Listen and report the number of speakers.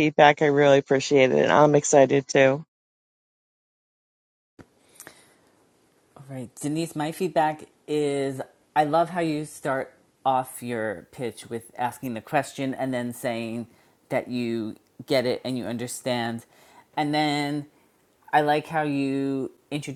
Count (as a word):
two